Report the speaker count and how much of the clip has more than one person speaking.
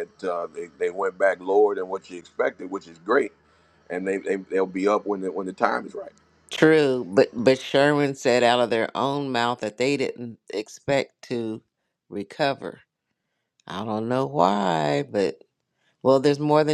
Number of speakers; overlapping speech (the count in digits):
2, no overlap